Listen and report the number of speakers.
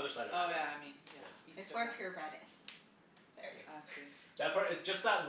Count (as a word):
three